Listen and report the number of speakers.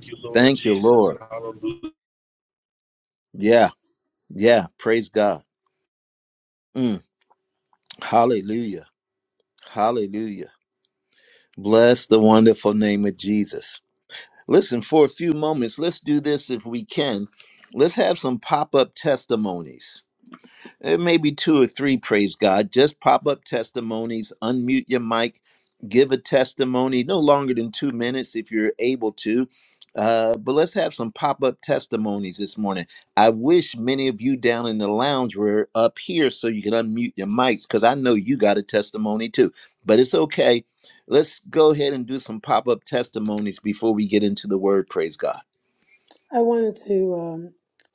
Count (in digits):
3